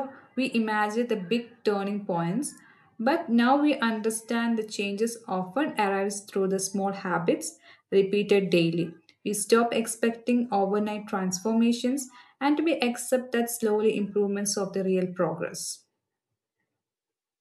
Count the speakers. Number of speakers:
1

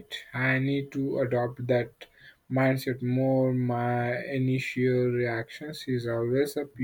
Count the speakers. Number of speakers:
1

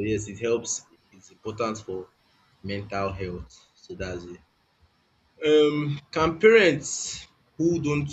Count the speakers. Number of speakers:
1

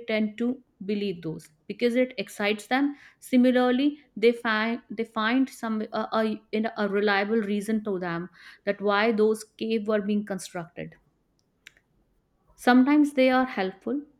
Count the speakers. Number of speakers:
1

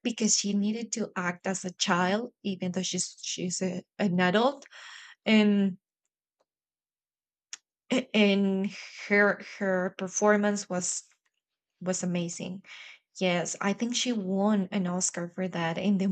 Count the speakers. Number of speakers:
1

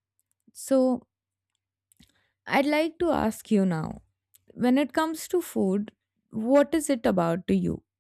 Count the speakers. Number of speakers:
1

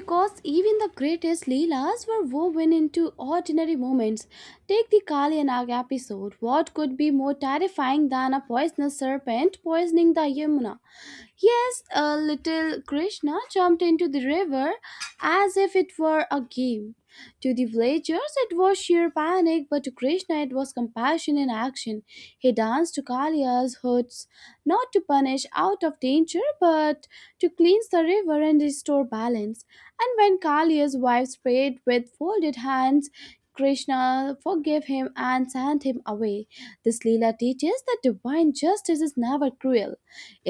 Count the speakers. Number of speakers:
1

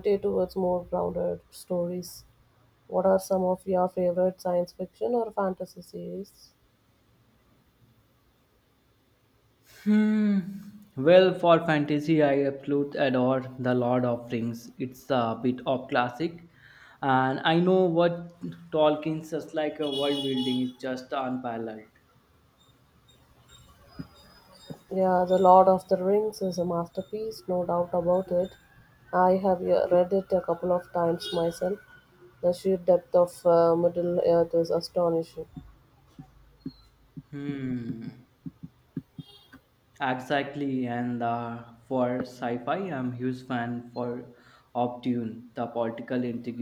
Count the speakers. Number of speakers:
2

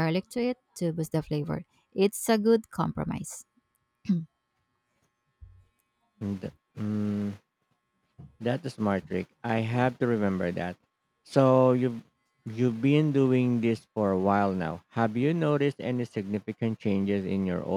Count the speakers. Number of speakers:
2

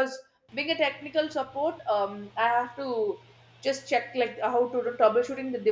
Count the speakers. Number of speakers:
1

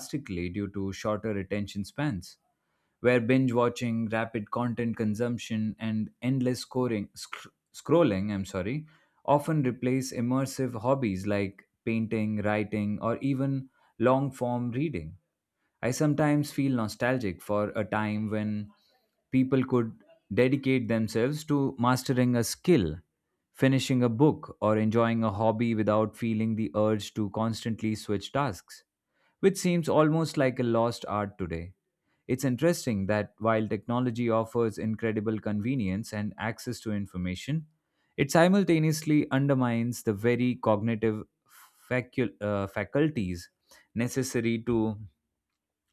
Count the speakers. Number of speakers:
1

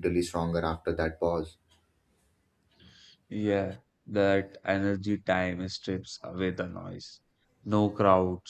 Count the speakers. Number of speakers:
2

